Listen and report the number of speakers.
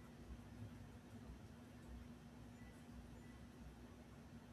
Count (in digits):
0